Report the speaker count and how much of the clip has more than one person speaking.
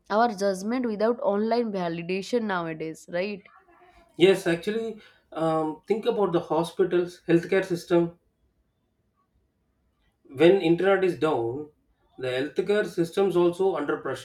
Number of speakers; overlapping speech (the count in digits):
2, no overlap